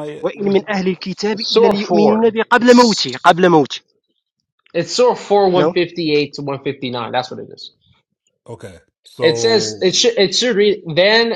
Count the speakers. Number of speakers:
3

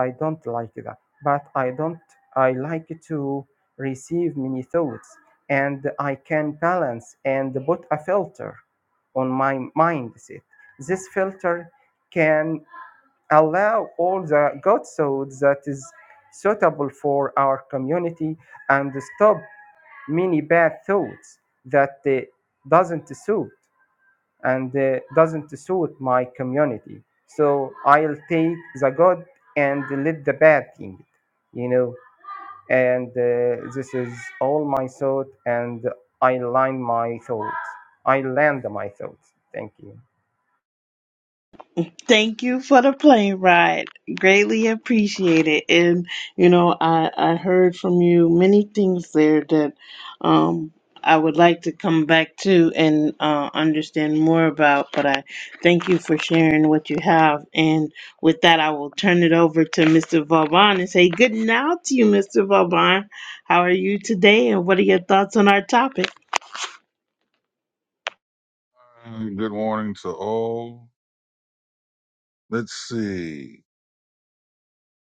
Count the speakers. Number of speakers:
3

